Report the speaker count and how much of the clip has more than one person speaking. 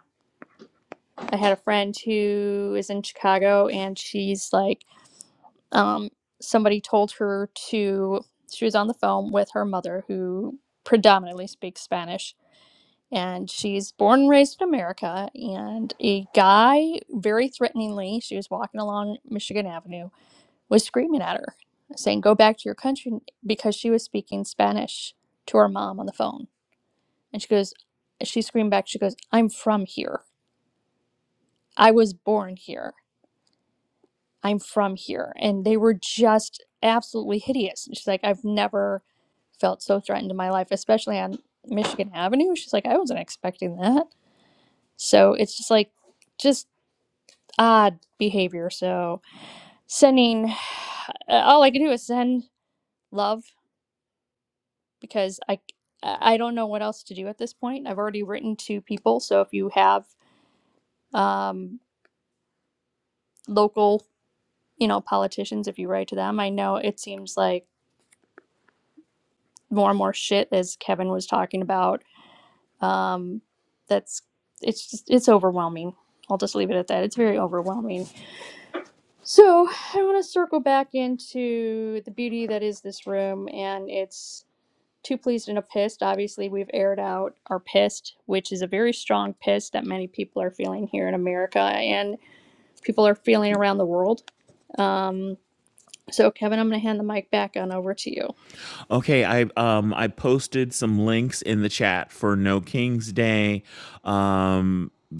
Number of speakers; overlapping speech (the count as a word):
two, no overlap